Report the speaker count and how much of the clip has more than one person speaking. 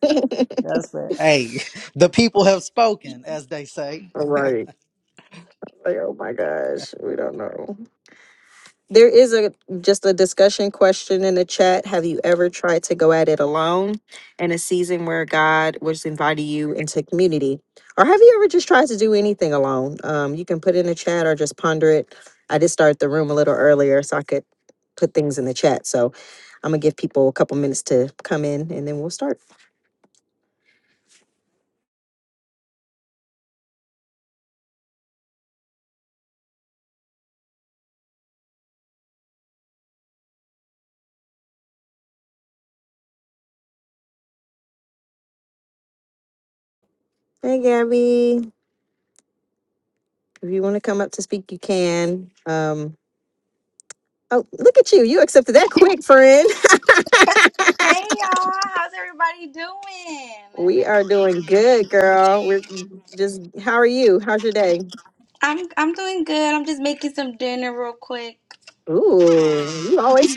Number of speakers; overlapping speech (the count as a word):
three, no overlap